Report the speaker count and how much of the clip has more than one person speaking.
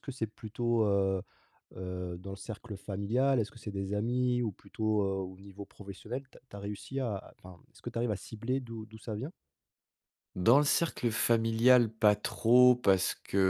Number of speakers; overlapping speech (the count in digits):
2, no overlap